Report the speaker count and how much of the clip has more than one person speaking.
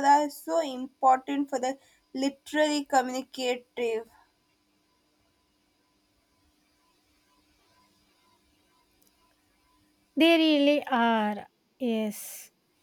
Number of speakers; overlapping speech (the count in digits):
2, no overlap